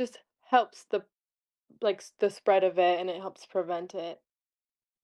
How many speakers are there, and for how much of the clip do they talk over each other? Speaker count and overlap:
one, no overlap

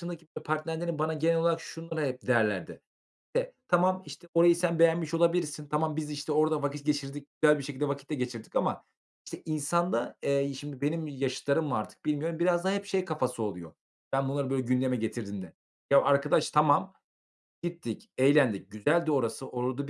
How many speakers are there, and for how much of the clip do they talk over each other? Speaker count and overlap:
one, no overlap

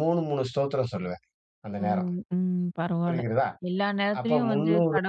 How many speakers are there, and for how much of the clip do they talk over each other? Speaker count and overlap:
two, about 22%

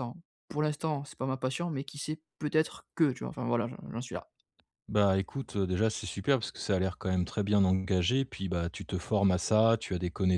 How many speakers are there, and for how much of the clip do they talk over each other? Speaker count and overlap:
two, no overlap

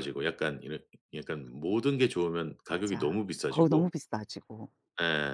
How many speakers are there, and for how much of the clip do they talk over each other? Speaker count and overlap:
two, about 15%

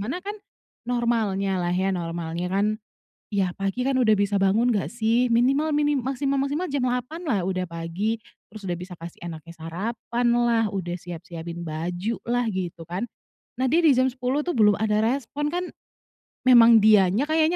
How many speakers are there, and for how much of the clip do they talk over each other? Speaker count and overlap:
one, no overlap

